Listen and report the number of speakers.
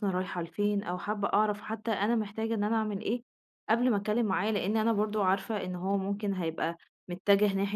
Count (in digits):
1